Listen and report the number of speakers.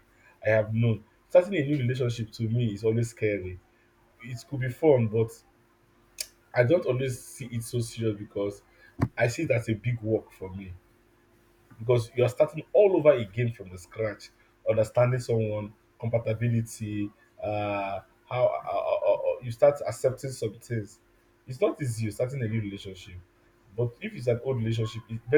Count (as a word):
one